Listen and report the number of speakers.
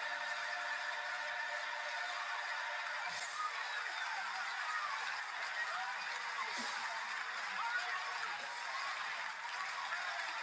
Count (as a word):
zero